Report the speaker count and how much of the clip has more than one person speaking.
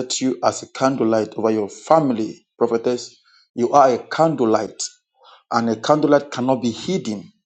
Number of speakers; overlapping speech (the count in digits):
1, no overlap